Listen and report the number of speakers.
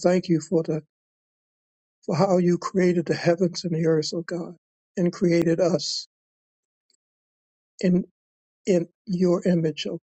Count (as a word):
one